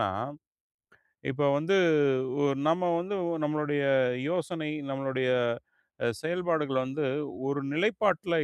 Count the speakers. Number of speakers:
1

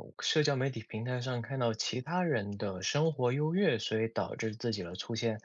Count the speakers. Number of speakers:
1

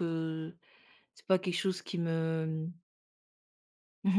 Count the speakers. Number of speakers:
1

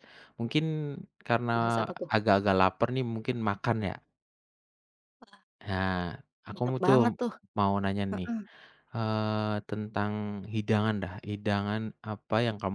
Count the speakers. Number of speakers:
2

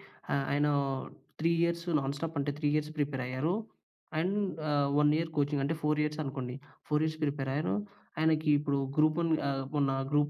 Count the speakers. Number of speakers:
1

